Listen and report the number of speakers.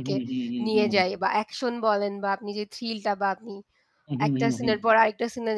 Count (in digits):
2